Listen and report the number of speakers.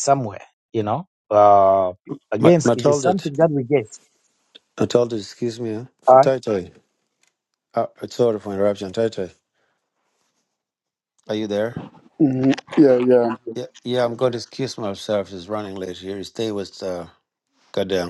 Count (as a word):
three